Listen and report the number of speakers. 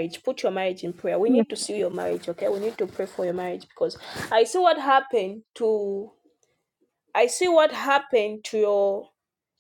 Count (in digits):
1